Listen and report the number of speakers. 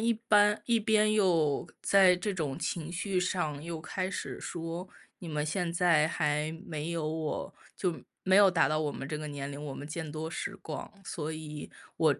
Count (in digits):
1